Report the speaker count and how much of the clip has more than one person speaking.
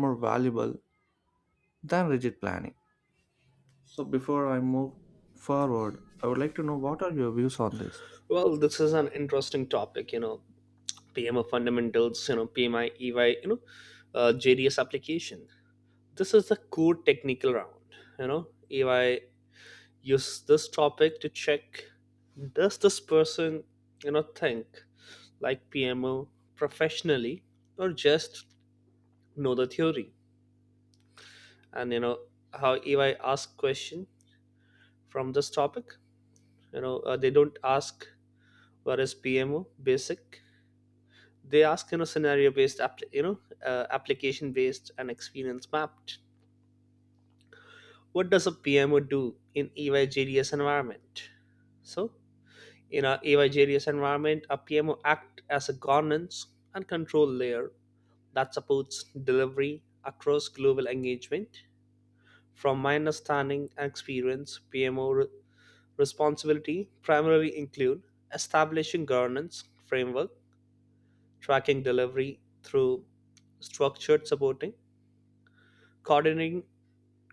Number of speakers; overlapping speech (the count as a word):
two, no overlap